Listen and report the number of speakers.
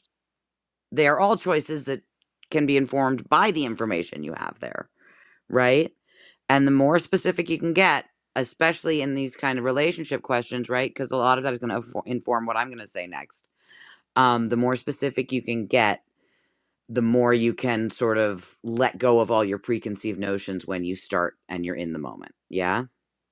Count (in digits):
1